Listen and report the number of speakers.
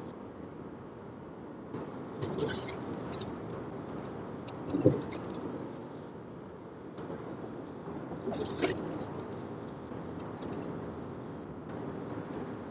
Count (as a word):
zero